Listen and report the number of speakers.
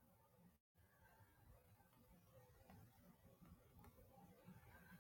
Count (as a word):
zero